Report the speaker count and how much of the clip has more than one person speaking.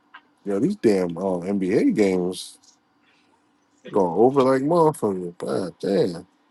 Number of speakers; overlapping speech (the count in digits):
1, no overlap